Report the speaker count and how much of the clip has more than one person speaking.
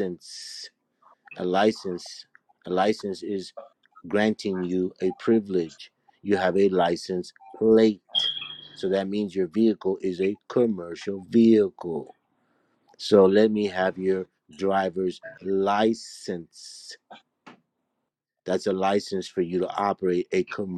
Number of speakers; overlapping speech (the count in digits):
1, no overlap